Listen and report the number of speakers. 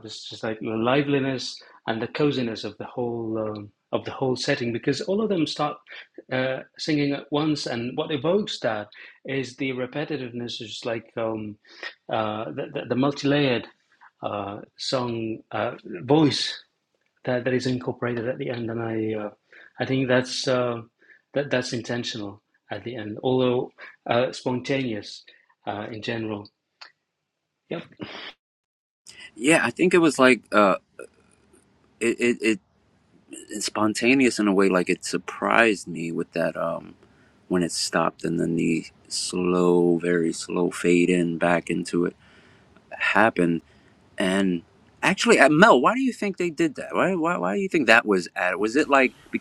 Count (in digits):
2